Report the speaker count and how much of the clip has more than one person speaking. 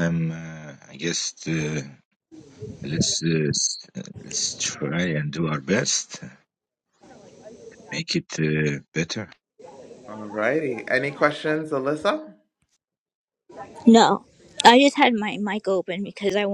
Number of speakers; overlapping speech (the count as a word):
three, no overlap